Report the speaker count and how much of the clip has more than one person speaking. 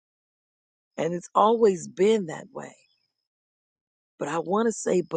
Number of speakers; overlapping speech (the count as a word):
one, no overlap